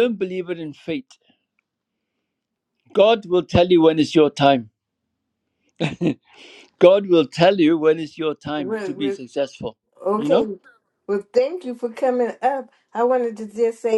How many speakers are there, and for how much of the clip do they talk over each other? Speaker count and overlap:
2, about 7%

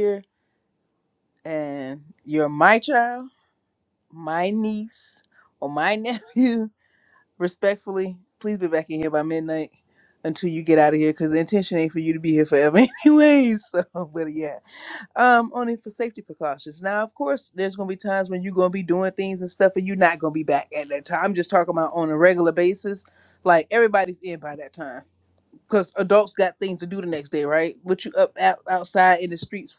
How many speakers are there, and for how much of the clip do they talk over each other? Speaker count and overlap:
1, no overlap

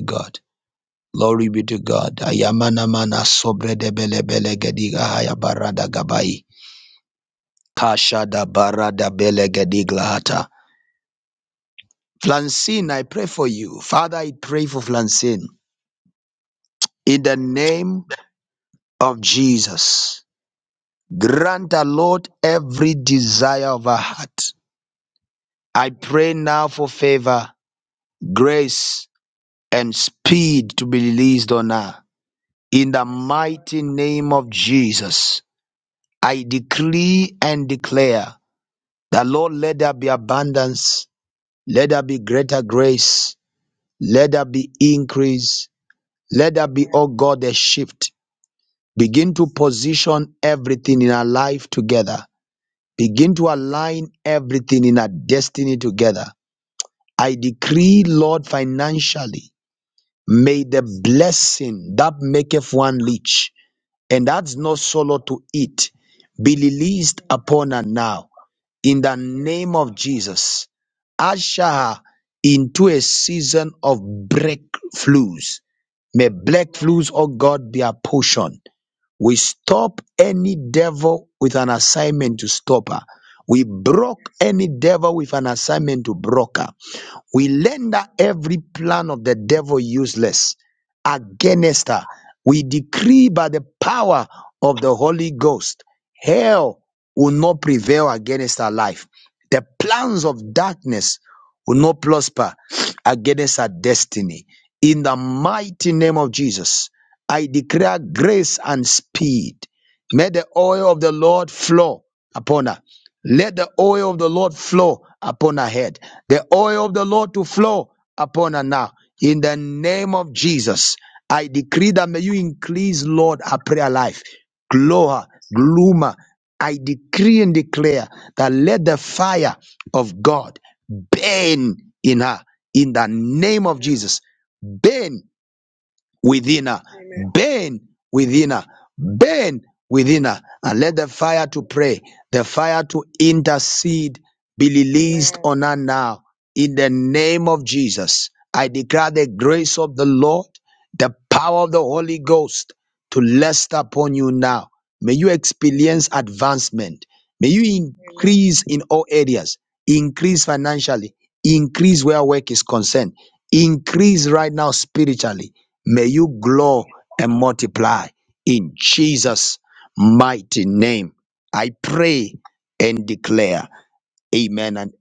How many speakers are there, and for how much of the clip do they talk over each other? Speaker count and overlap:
1, no overlap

